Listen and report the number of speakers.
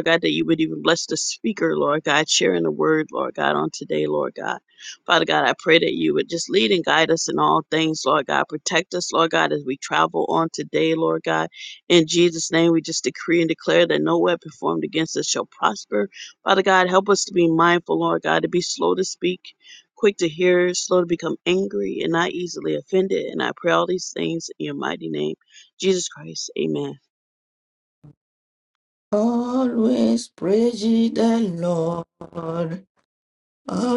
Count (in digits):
2